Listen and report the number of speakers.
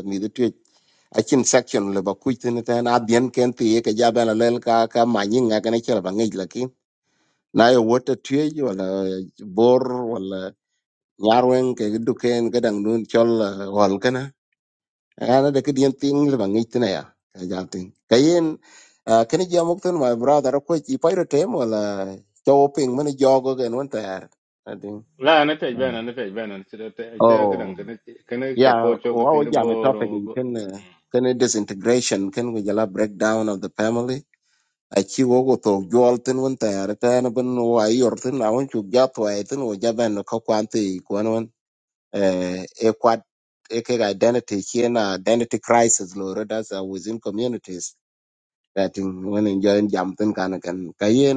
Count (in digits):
2